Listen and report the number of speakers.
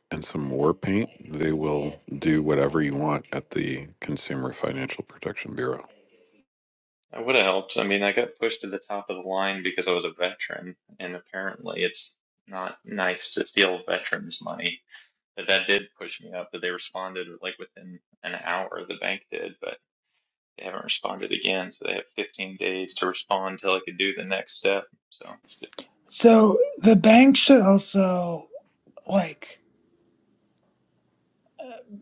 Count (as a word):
three